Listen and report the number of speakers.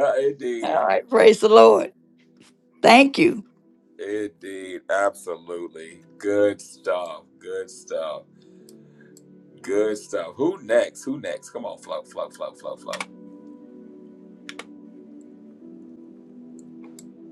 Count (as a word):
two